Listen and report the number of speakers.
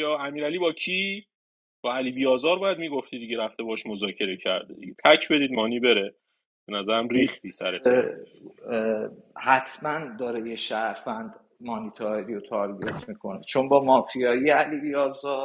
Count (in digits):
2